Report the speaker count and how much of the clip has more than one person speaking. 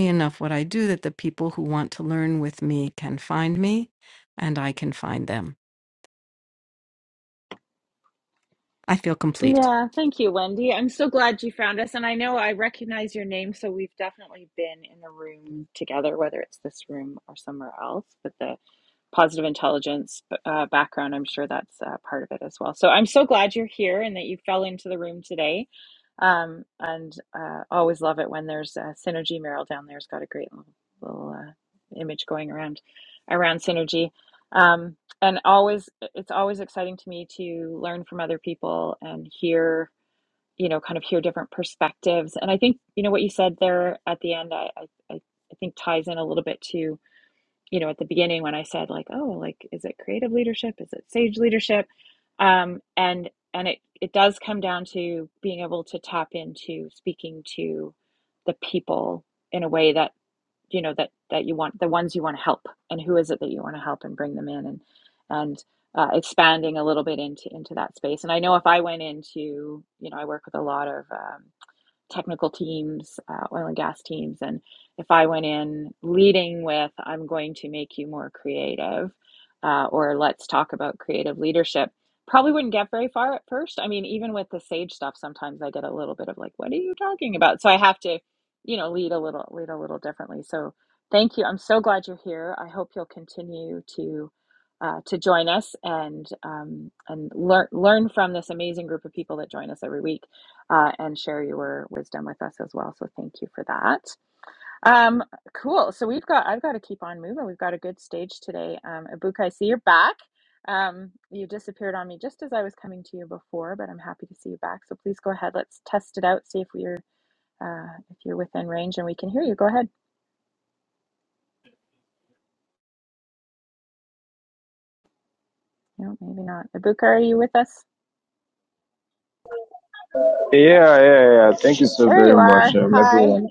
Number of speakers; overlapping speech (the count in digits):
3, about 1%